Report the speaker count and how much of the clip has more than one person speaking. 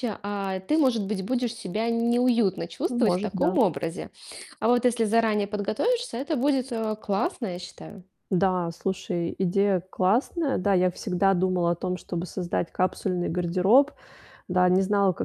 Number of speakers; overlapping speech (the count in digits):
2, about 5%